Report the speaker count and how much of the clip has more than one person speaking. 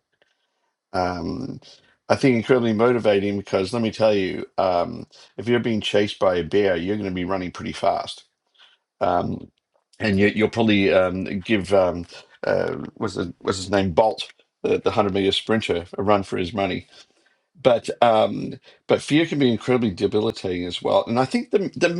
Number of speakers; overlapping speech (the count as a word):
one, no overlap